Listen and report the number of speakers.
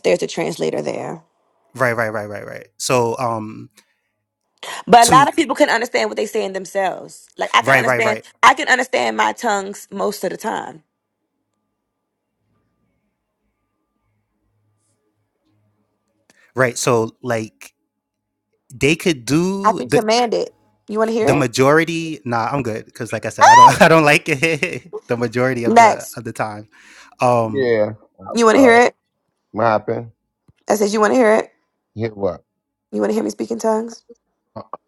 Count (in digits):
3